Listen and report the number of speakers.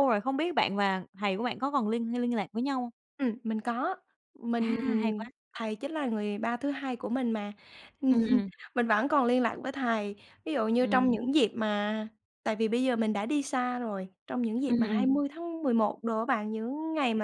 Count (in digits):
2